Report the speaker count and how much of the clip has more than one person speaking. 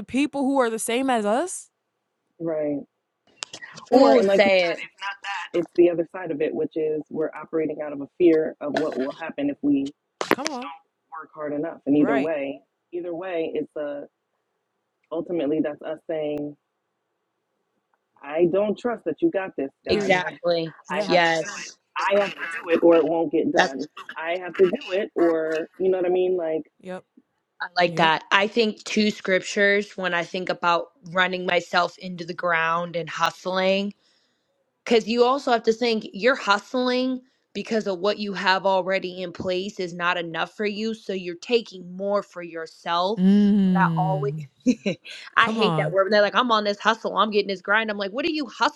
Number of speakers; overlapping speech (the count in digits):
3, about 8%